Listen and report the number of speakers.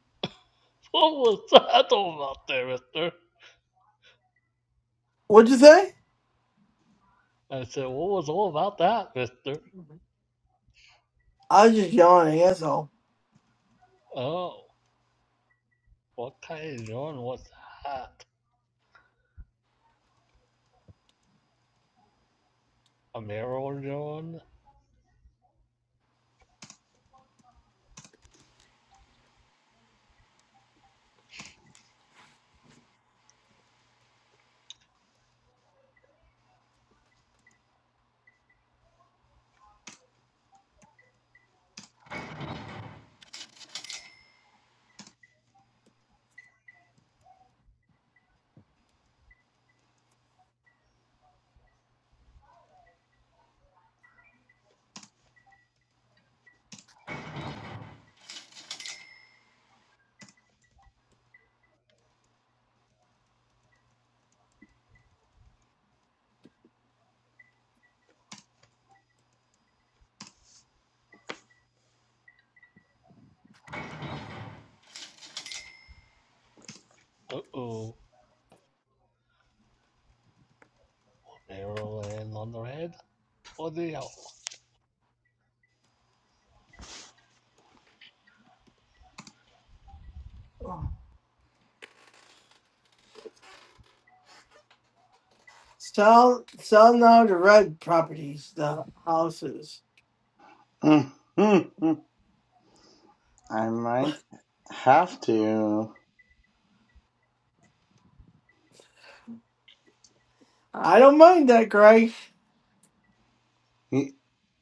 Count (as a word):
three